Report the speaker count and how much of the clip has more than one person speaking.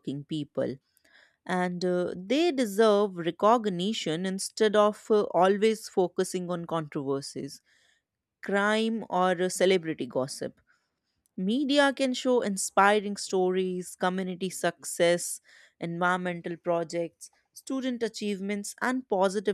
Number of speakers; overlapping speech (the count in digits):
1, no overlap